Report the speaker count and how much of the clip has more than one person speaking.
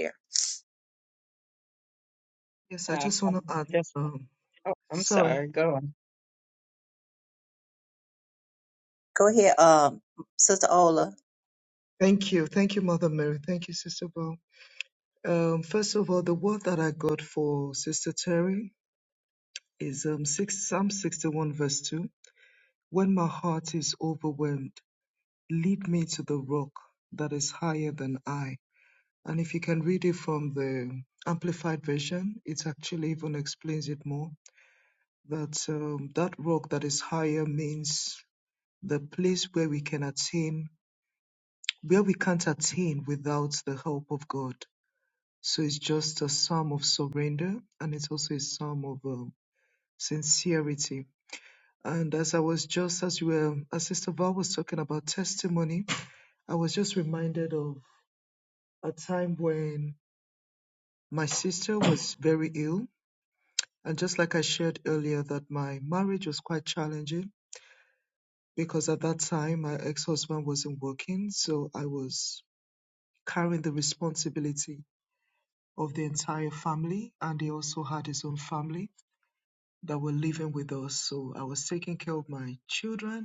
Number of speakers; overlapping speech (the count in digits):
3, about 1%